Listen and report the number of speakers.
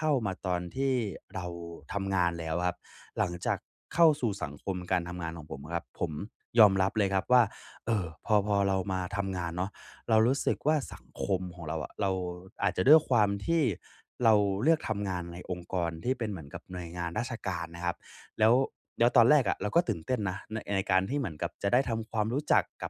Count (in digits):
1